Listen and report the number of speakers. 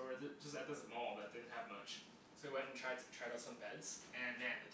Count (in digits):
1